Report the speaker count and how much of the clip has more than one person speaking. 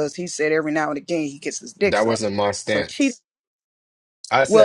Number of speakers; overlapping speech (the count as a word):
two, about 13%